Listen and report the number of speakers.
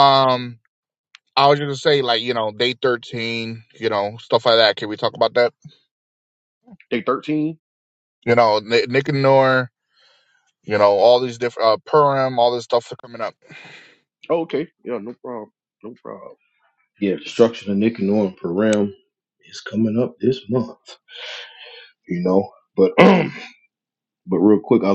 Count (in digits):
3